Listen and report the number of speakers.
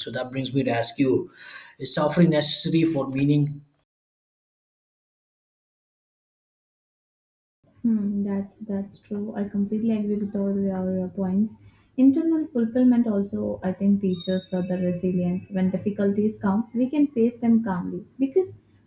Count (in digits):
2